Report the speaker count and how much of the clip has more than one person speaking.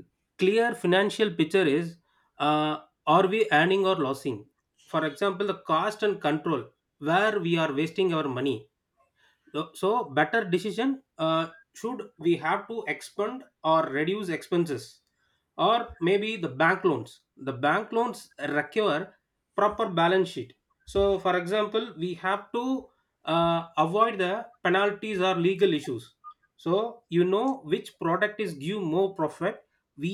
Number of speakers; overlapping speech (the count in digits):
1, no overlap